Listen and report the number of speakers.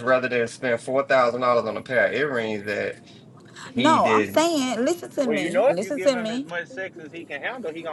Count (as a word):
three